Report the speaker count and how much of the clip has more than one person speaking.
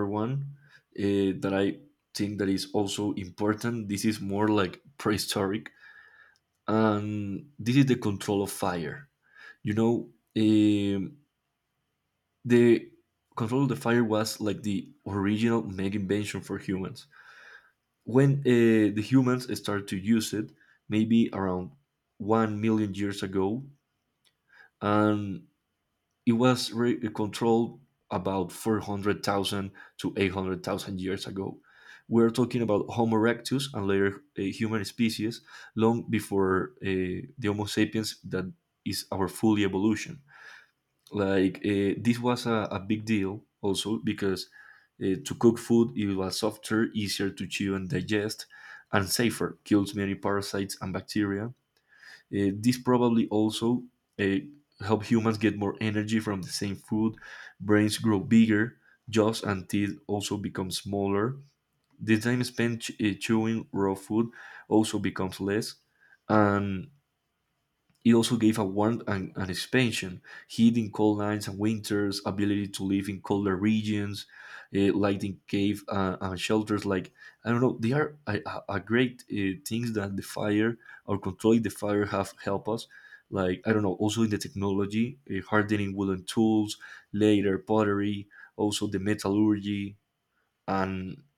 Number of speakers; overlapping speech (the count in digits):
1, no overlap